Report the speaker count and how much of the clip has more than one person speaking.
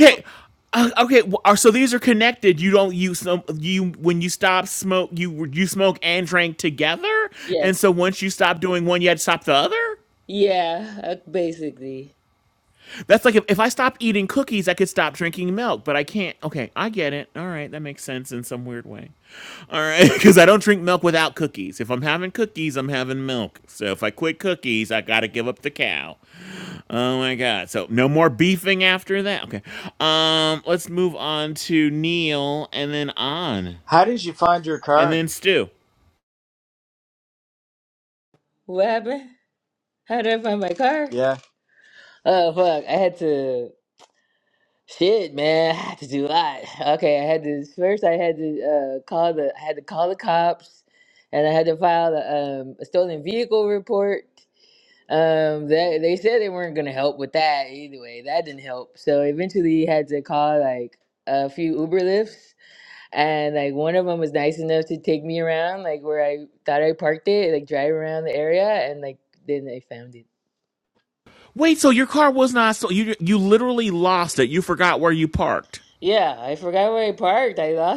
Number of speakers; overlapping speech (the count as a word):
three, about 1%